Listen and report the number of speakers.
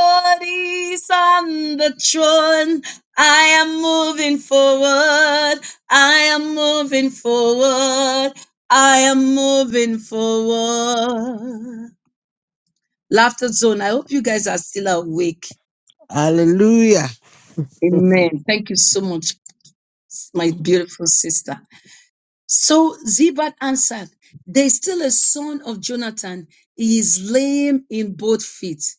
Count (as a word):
two